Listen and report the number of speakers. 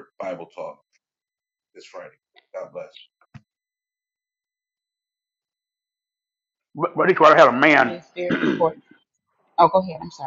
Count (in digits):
3